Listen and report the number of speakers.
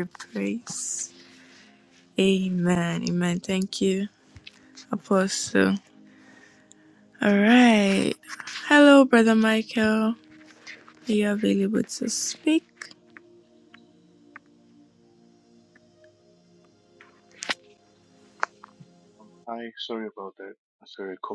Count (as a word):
two